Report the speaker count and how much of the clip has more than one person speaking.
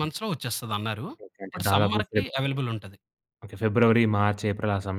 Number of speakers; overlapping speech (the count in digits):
2, about 14%